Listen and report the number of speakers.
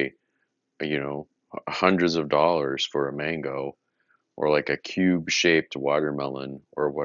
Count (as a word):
one